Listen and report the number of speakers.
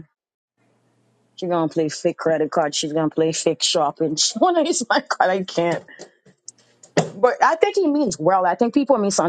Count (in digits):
1